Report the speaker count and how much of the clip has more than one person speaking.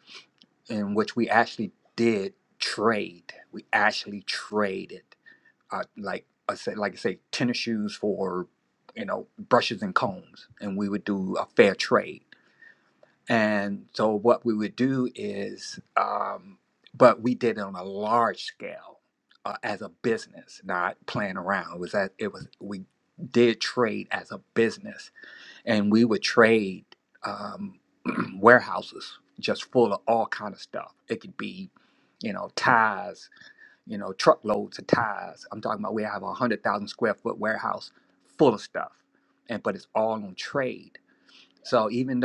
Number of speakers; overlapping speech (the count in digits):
1, no overlap